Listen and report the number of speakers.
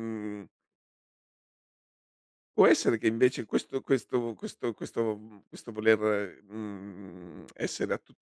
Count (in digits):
1